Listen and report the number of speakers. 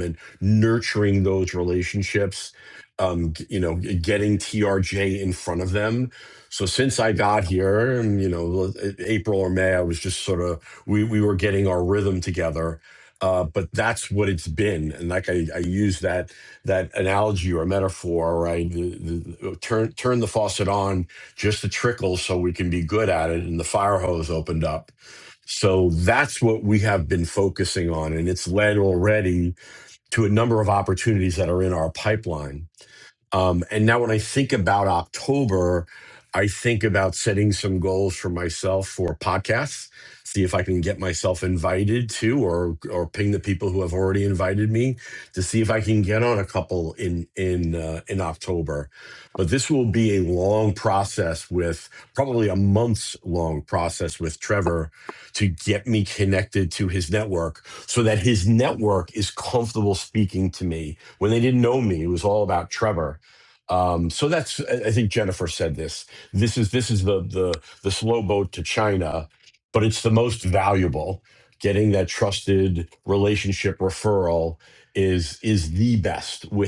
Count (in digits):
1